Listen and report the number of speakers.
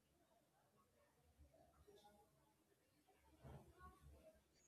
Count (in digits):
0